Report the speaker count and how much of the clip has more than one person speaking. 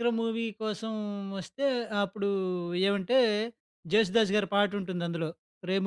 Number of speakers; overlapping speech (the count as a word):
one, no overlap